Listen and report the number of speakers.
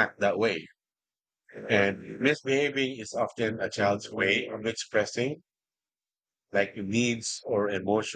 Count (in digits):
1